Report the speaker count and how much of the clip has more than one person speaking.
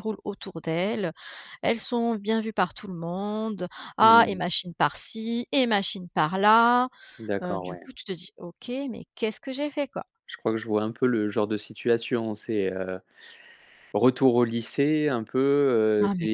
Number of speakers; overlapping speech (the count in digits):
2, about 7%